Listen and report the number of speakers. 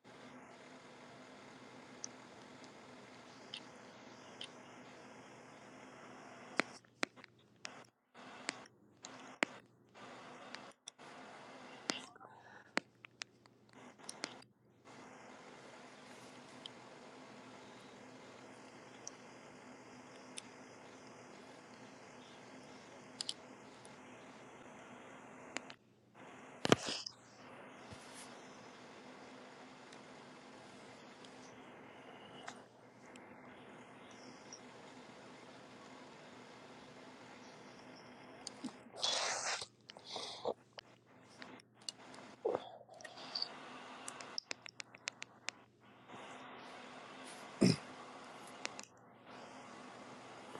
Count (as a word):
zero